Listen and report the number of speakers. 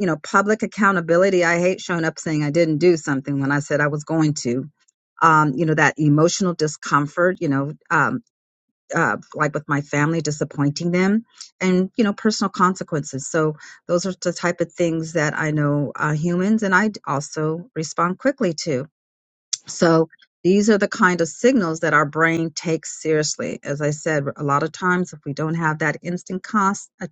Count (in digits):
1